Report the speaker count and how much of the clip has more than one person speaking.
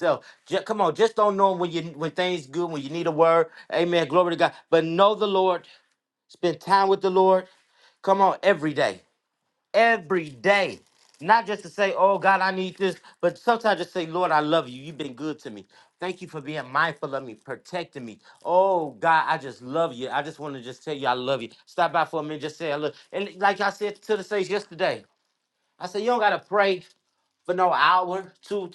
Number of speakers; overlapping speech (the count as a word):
one, no overlap